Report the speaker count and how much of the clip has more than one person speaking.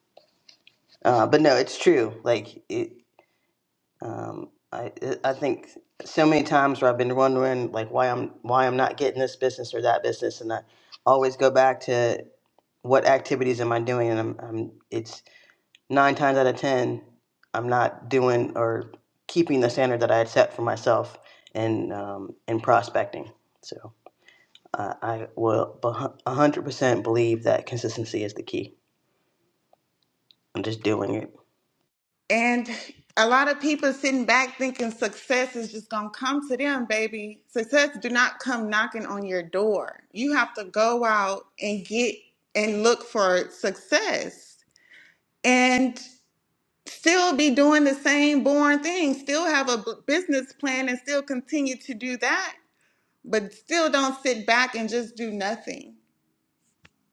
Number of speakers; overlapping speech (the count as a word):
two, no overlap